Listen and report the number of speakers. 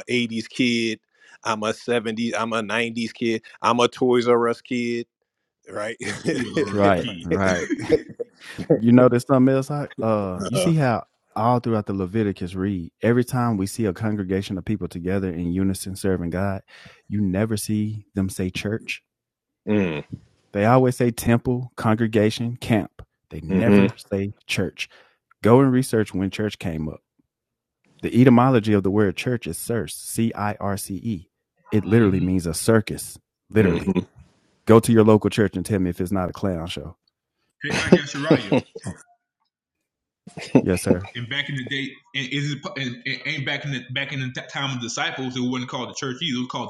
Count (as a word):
three